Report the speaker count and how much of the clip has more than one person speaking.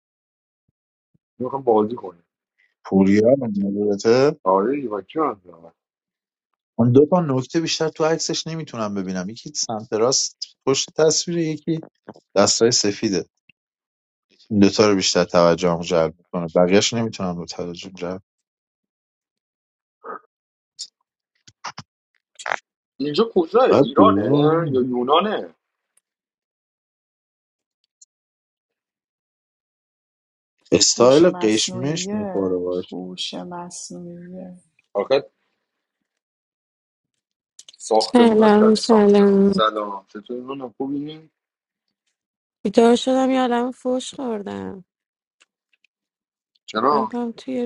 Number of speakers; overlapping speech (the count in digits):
4, about 7%